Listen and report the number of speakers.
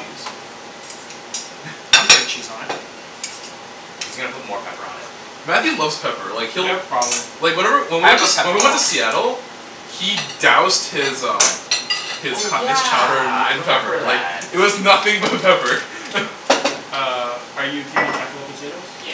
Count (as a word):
four